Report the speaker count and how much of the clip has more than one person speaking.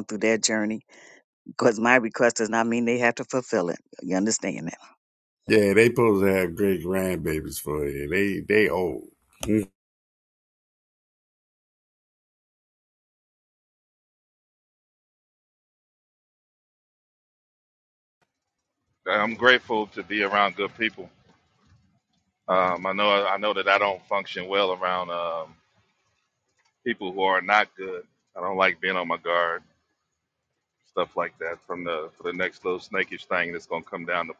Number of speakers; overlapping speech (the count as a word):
three, no overlap